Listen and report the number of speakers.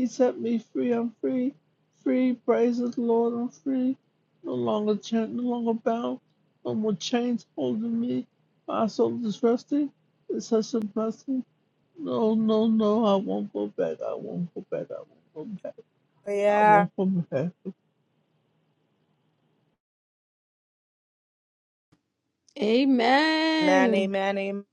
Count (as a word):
three